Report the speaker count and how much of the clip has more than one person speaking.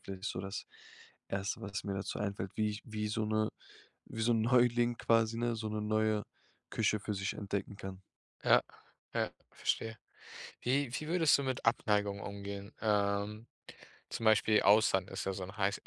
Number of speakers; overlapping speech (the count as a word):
two, no overlap